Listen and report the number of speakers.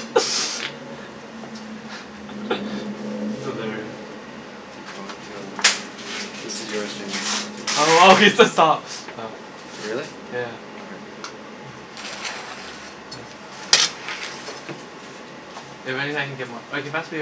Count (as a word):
two